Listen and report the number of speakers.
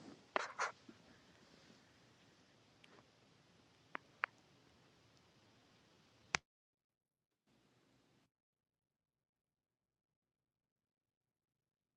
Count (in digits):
0